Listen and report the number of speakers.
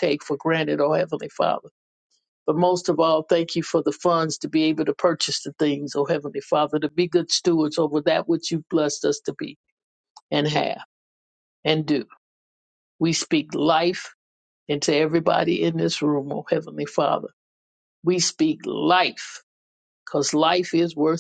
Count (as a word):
one